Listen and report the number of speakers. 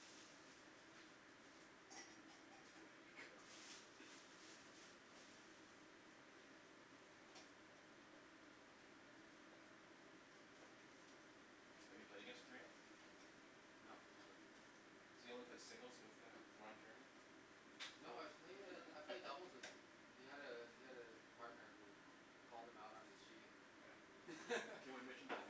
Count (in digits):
2